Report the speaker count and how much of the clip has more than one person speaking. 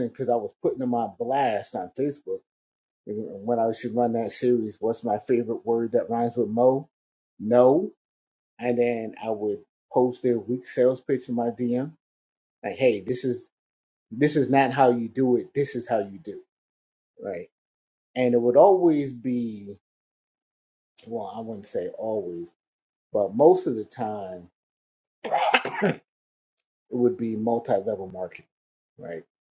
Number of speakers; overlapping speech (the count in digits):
1, no overlap